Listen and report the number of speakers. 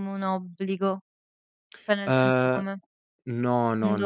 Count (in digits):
2